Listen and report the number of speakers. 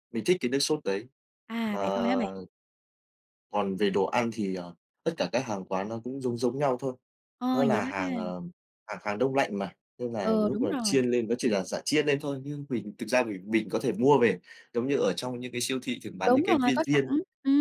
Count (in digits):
2